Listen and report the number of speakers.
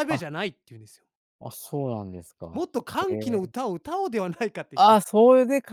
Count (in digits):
2